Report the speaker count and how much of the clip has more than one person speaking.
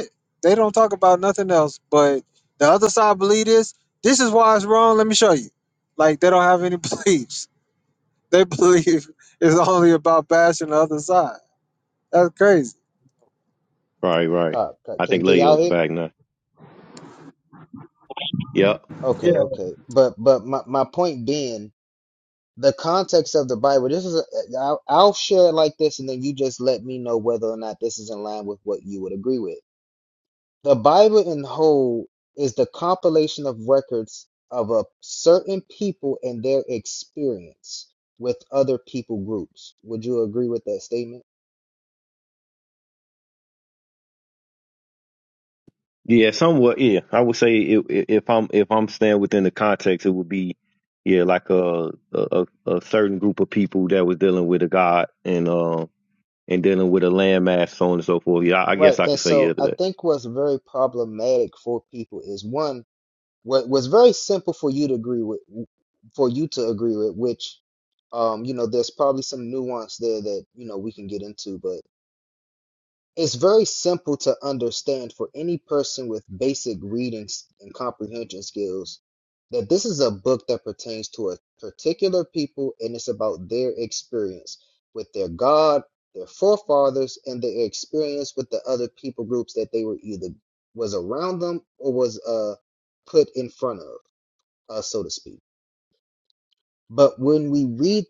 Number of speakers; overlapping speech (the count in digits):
3, about 2%